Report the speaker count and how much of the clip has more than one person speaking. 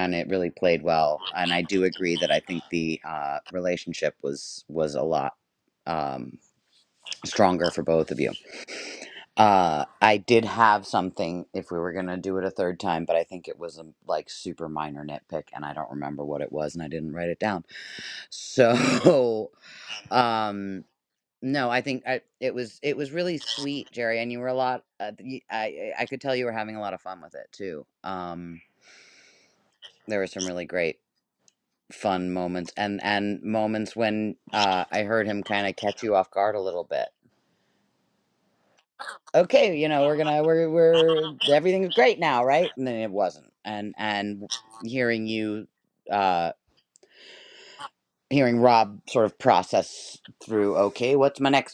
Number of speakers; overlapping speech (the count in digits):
1, no overlap